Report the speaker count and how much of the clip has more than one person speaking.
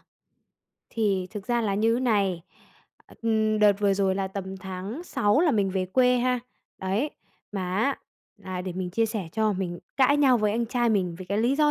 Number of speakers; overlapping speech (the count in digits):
1, no overlap